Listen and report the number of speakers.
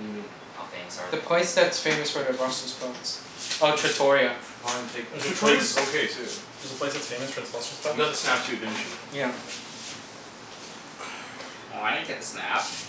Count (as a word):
four